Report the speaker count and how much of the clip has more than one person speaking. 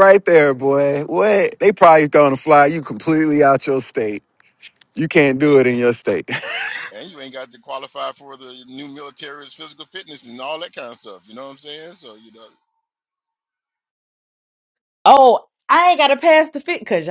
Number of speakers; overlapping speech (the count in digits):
3, about 2%